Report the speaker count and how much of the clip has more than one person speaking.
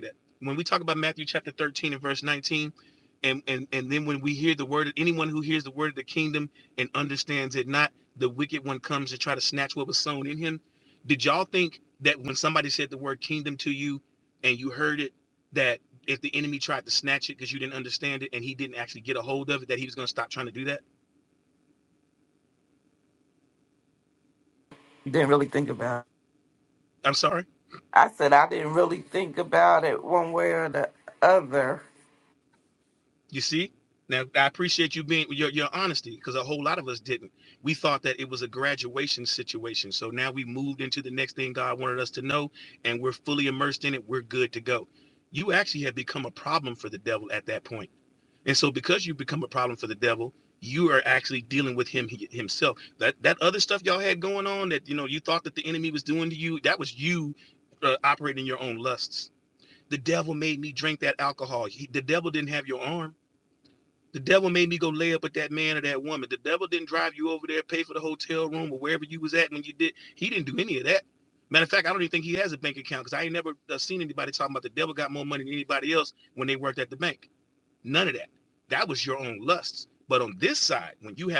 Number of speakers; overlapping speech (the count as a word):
two, no overlap